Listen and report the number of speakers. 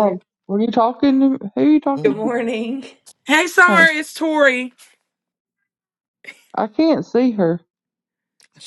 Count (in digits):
3